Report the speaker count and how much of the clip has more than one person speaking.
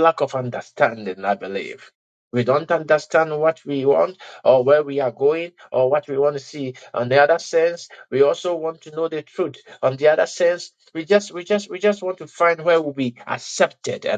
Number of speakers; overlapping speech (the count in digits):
1, no overlap